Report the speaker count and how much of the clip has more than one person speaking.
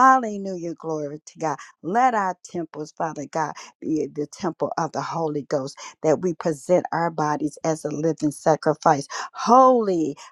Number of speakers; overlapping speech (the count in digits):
1, no overlap